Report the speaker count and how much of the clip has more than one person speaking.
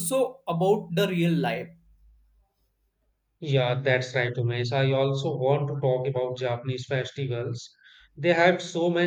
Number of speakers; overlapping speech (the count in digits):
2, no overlap